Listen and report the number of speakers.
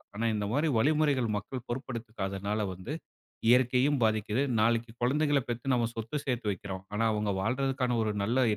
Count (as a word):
one